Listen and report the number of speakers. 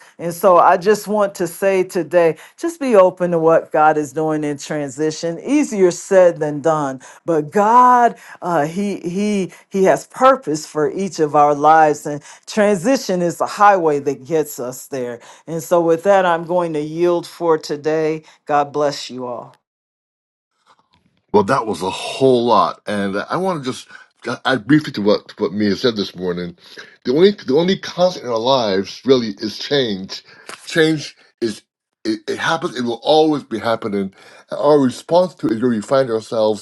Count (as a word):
two